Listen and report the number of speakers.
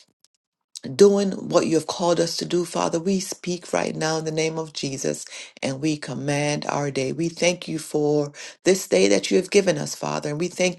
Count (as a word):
one